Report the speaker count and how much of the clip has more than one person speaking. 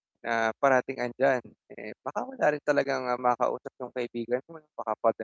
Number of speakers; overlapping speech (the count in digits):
1, no overlap